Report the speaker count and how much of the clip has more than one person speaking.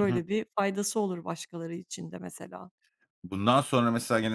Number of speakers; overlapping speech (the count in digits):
2, about 5%